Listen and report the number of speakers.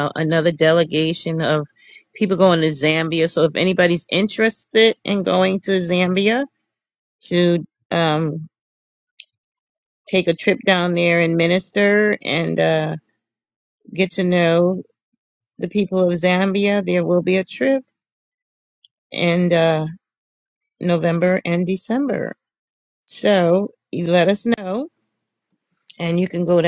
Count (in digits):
1